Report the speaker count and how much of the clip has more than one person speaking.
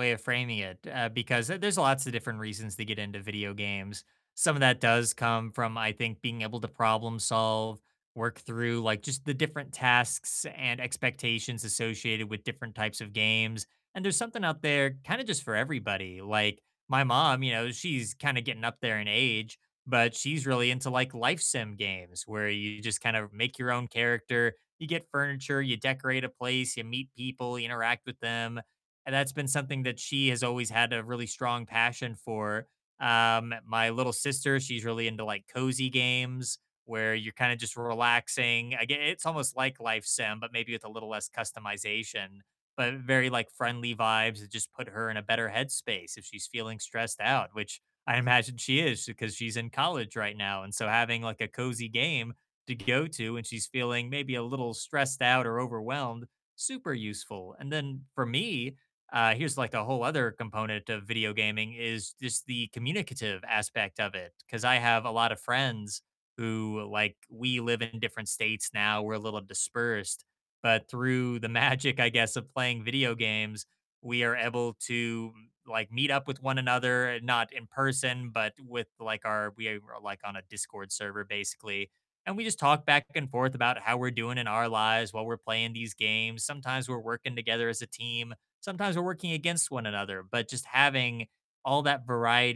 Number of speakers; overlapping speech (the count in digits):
1, no overlap